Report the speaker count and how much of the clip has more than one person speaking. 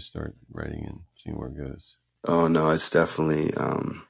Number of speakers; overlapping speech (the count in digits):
2, no overlap